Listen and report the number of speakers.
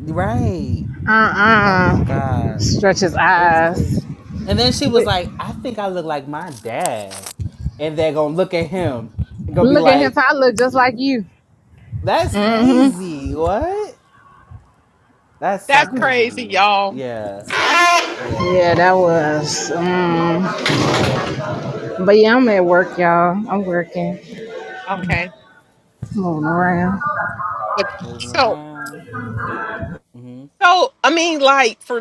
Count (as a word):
three